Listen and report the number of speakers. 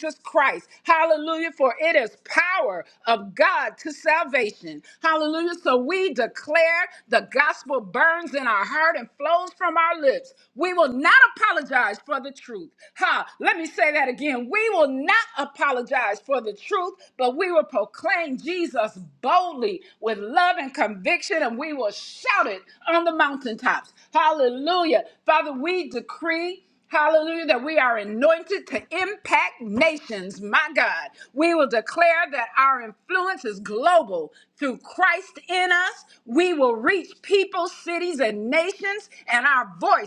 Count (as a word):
one